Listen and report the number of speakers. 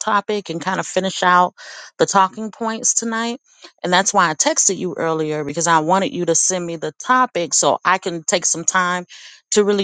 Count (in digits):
1